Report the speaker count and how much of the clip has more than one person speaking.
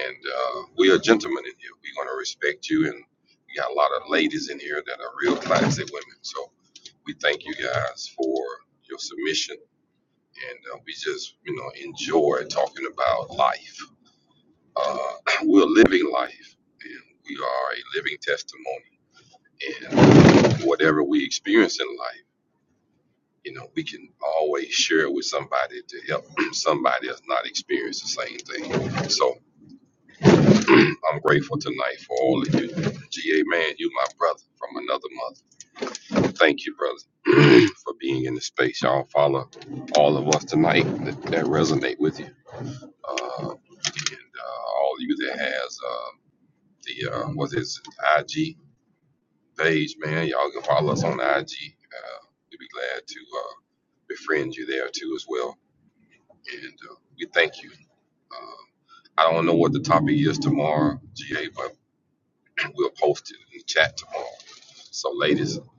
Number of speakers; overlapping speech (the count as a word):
one, no overlap